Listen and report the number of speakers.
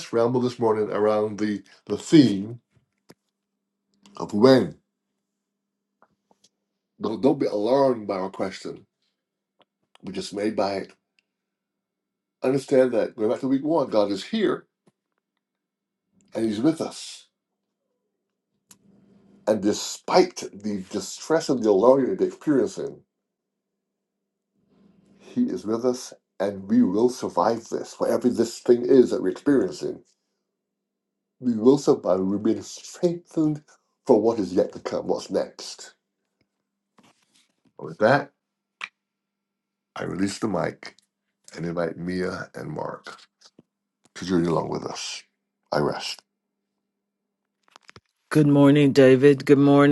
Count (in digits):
2